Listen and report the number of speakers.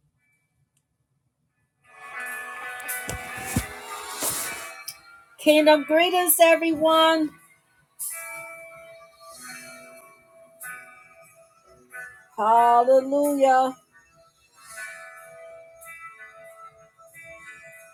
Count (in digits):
1